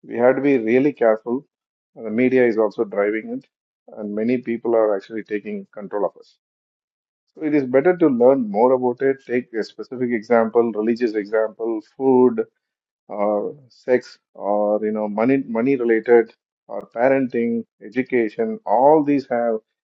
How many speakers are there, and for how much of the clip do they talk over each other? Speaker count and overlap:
one, no overlap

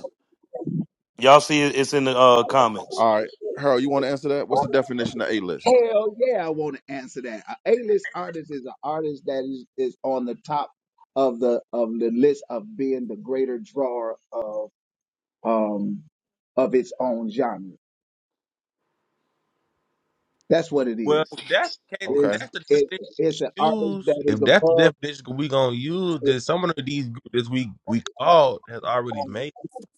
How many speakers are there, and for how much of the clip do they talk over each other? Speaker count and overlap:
four, about 7%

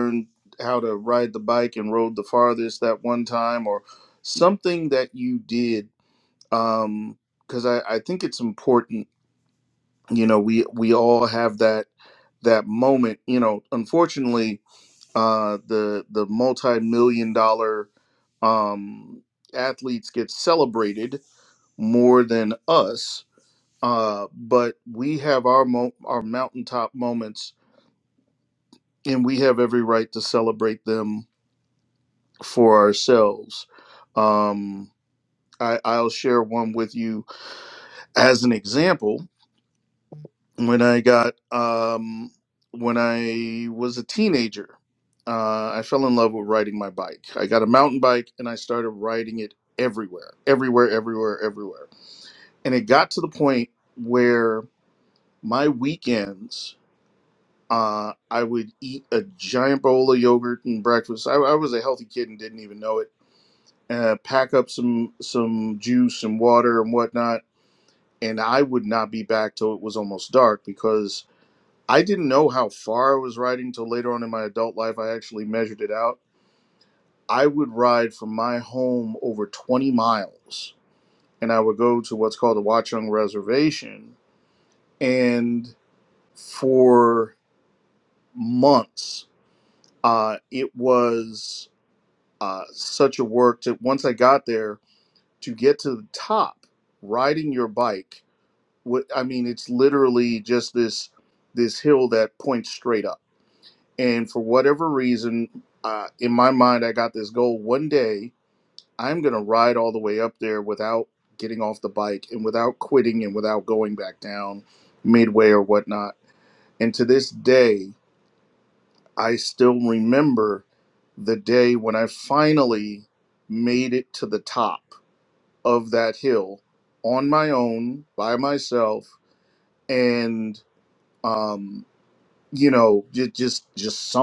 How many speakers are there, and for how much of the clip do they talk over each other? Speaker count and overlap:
one, no overlap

